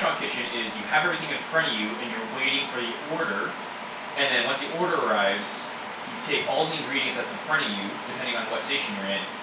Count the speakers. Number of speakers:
1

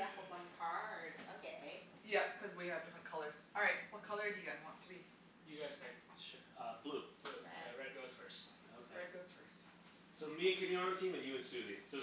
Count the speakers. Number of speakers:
4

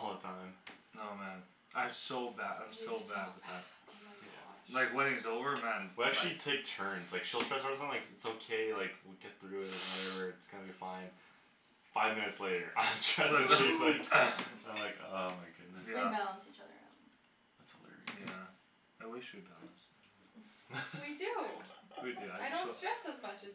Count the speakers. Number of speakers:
4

